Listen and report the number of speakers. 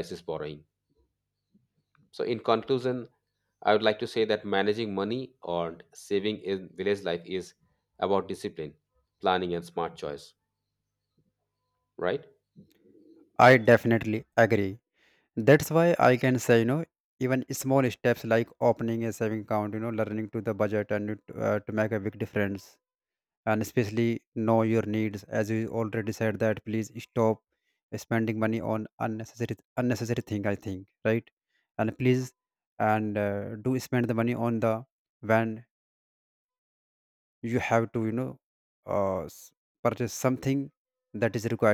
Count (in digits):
2